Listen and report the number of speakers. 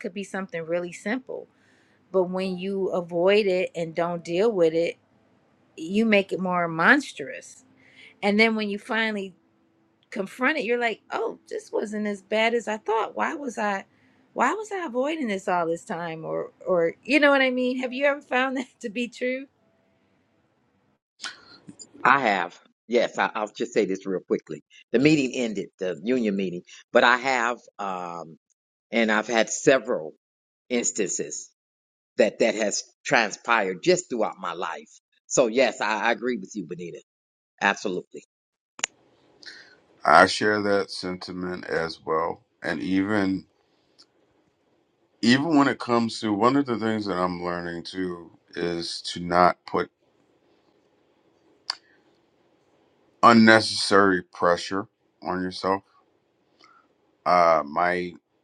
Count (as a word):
three